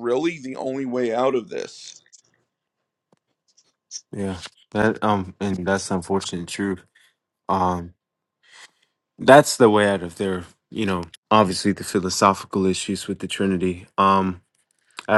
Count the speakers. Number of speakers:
two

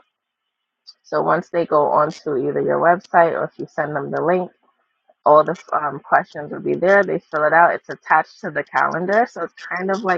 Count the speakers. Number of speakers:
one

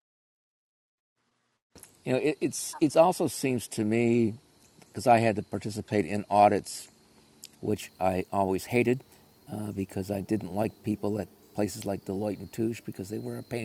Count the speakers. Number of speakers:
one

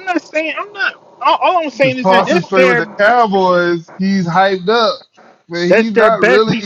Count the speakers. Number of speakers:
two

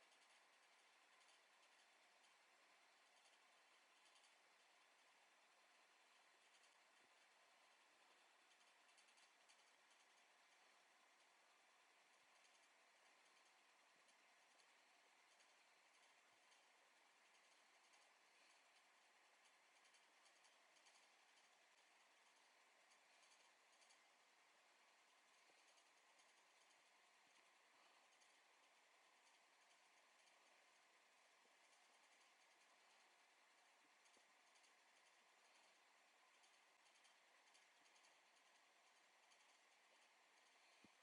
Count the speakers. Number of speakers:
zero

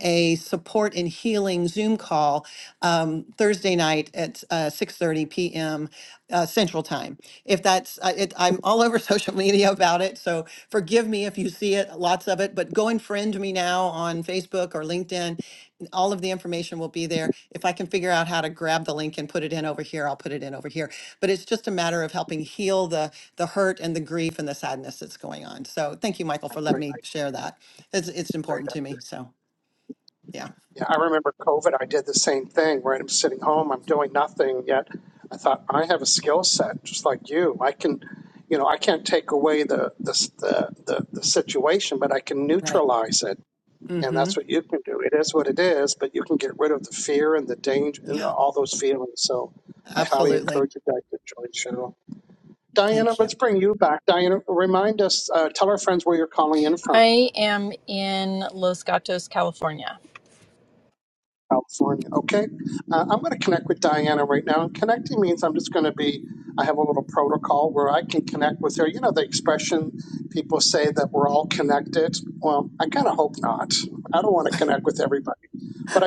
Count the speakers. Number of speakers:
three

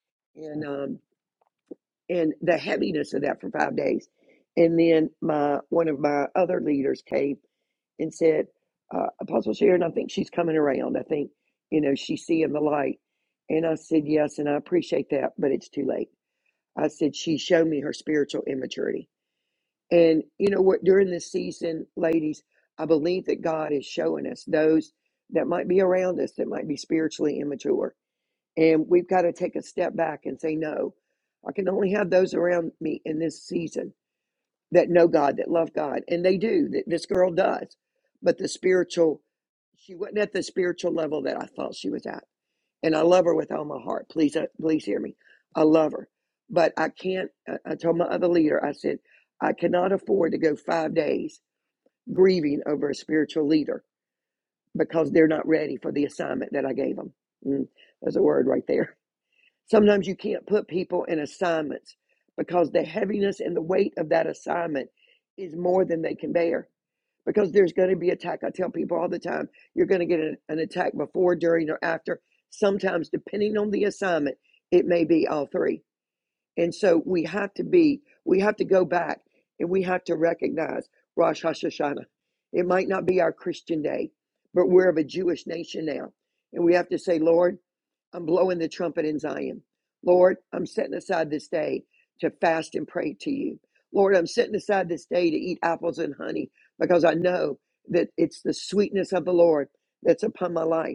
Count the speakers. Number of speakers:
one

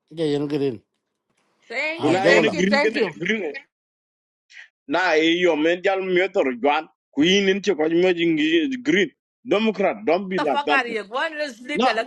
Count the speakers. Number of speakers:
three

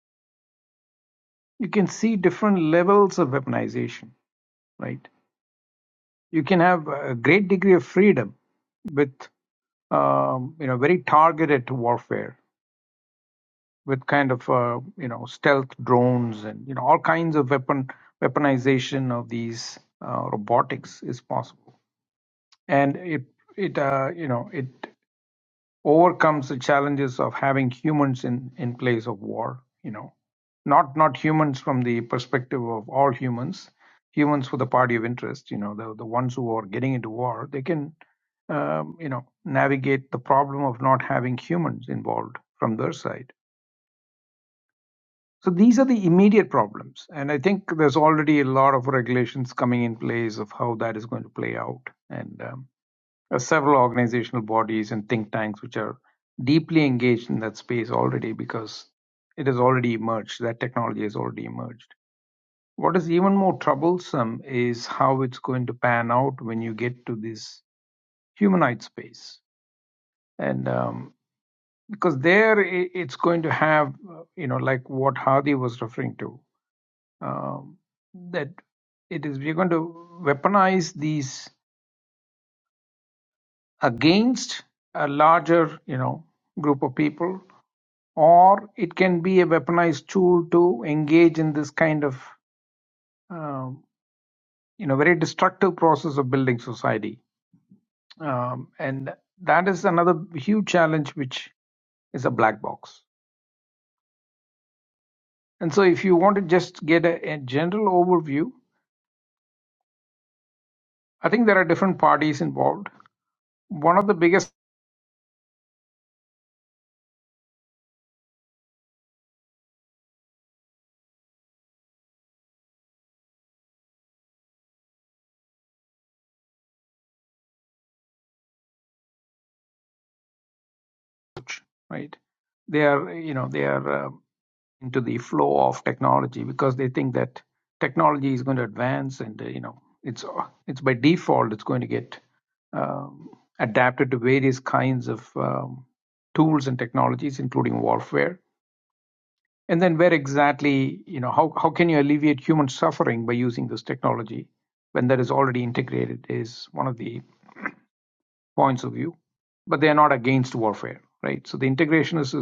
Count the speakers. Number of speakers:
one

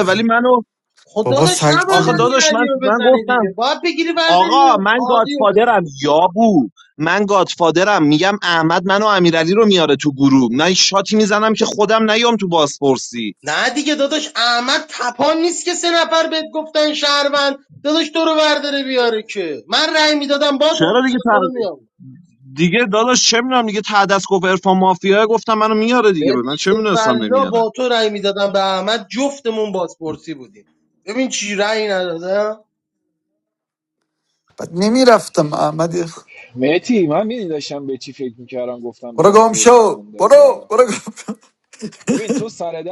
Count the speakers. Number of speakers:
four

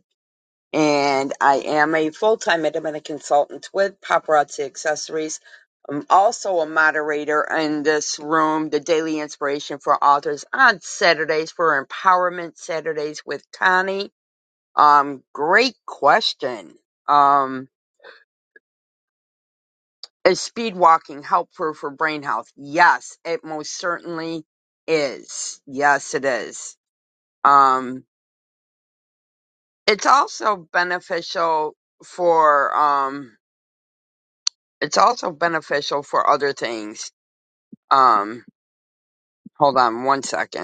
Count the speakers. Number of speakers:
one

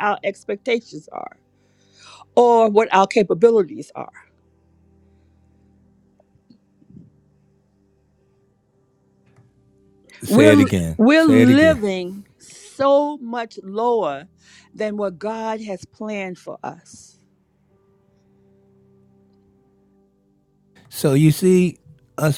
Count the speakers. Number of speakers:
two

